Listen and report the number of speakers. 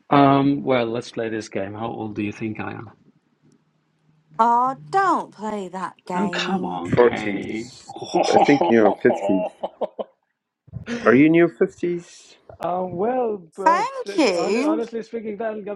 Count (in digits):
3